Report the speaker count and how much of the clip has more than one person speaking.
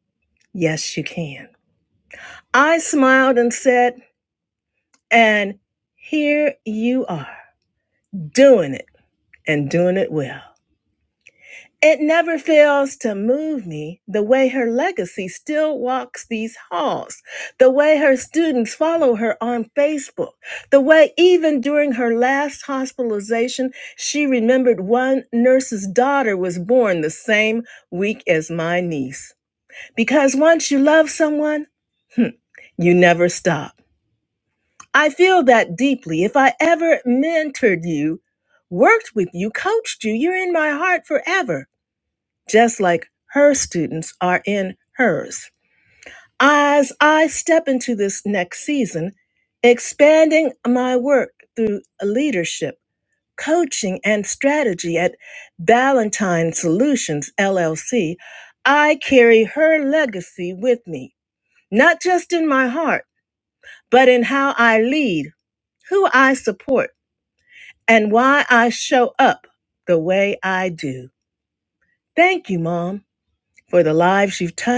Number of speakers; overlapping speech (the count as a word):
one, no overlap